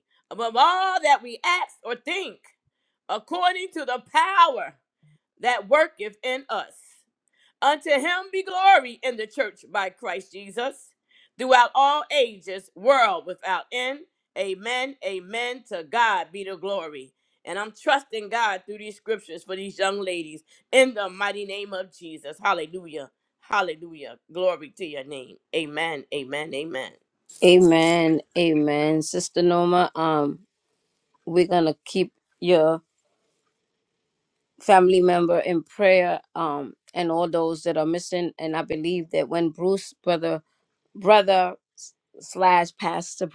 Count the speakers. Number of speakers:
2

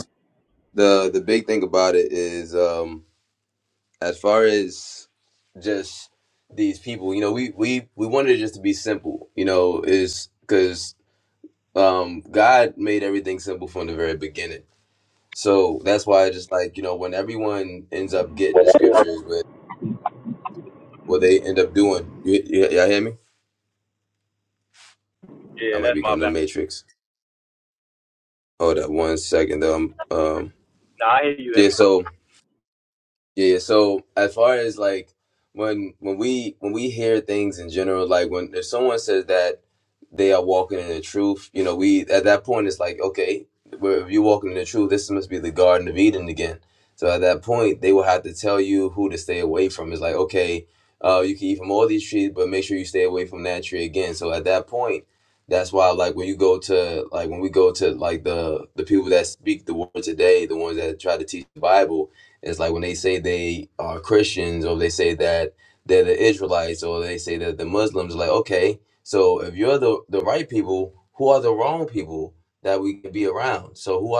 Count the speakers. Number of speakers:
2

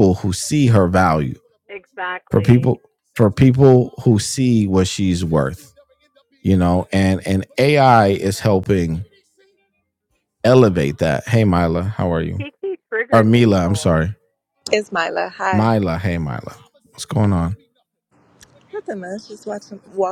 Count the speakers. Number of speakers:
3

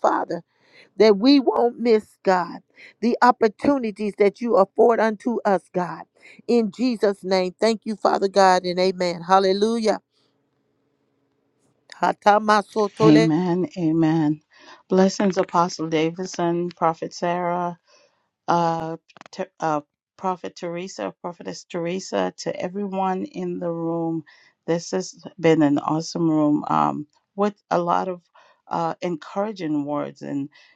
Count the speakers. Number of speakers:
2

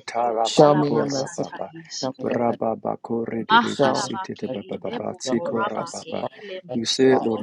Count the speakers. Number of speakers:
3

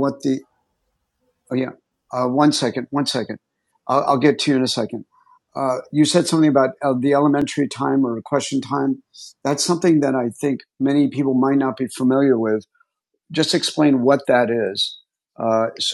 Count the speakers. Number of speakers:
1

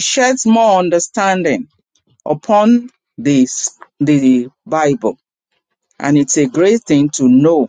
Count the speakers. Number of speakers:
1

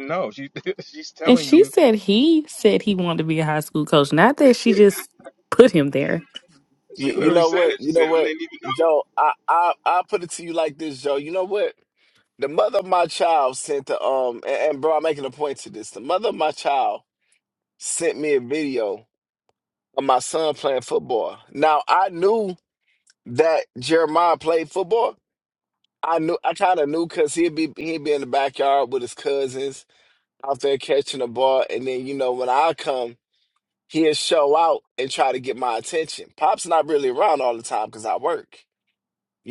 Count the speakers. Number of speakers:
3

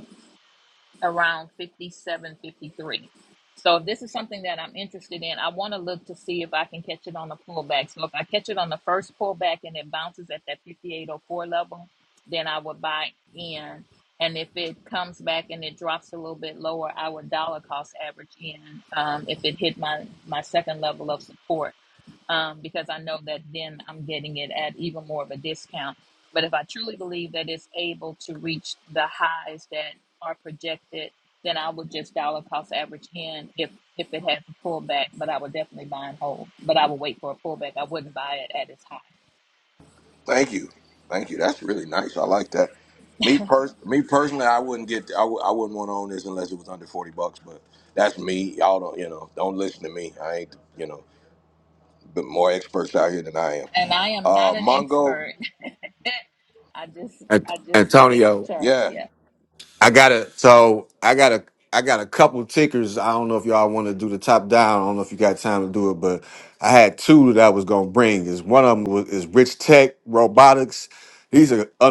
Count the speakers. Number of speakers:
3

